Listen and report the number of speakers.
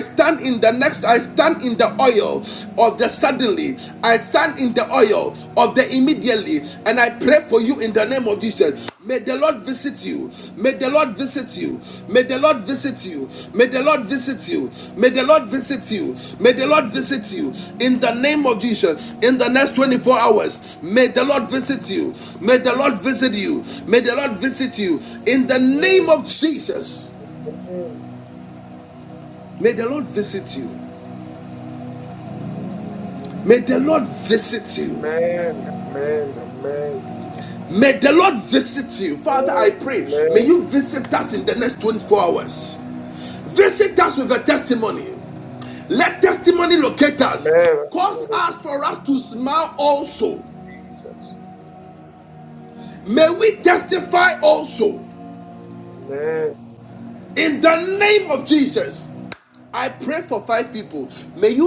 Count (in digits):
2